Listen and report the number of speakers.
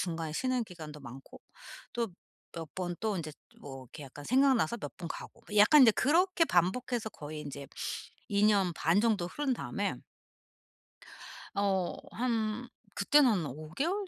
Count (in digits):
1